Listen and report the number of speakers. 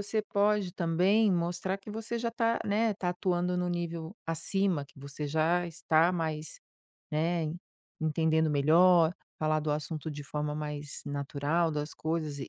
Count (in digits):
1